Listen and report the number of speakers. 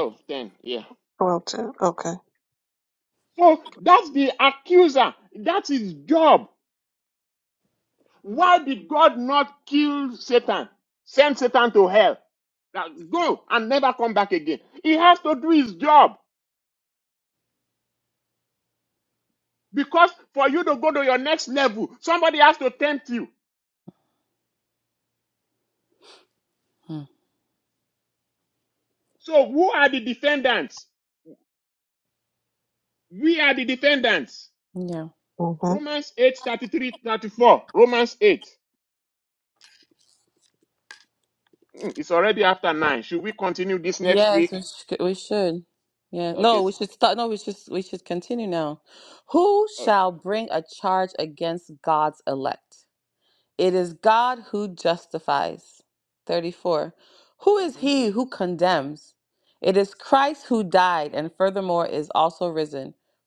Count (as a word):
three